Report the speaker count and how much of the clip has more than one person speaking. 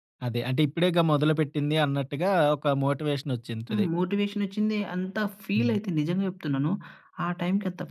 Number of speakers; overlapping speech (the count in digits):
2, about 5%